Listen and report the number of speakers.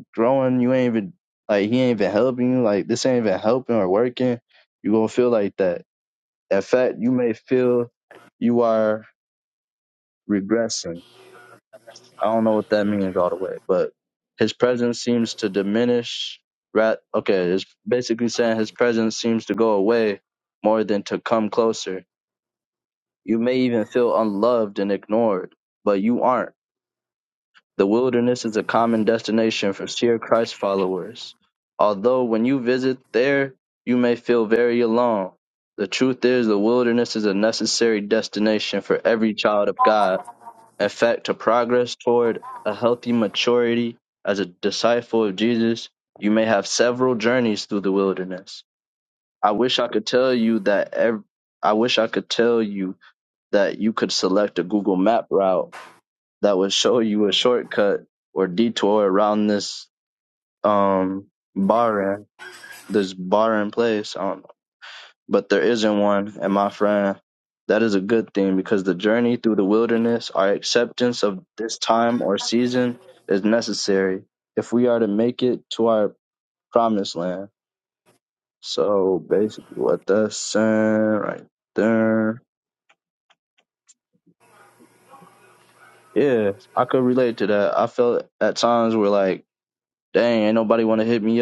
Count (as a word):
one